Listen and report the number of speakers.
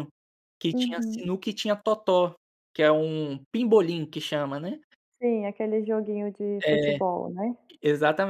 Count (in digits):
2